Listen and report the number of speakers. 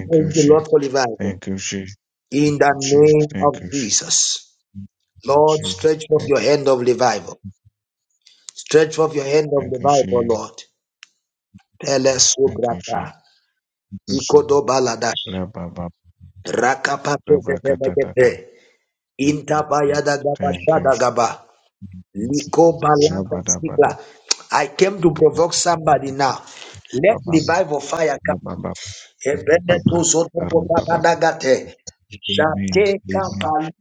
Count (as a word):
two